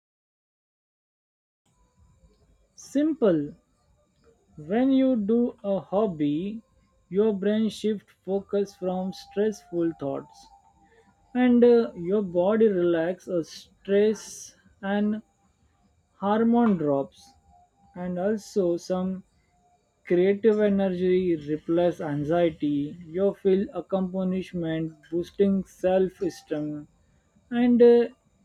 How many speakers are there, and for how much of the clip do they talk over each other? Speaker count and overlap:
one, no overlap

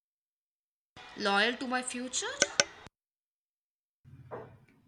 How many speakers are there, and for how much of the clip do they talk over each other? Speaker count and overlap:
one, no overlap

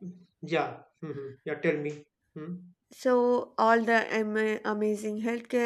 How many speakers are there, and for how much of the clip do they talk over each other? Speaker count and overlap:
two, no overlap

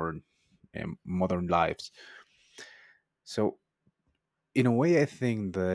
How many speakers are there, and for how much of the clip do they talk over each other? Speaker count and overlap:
one, no overlap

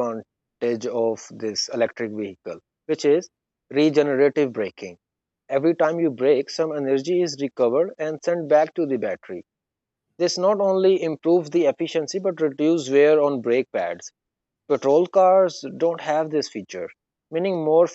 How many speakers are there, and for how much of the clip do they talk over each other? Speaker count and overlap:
one, no overlap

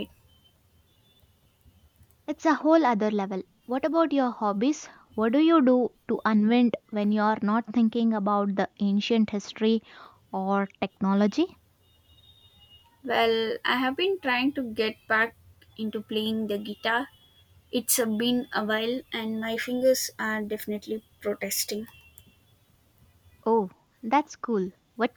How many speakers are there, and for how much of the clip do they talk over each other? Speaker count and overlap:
two, no overlap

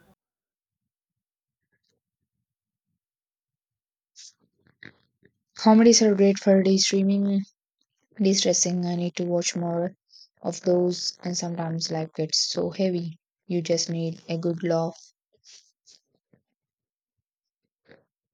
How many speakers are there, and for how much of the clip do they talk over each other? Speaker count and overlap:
one, no overlap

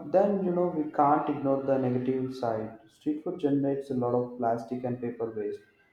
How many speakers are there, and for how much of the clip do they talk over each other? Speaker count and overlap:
one, no overlap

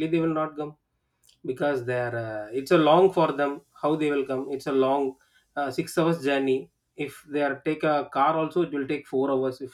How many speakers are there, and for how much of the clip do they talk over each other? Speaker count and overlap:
one, no overlap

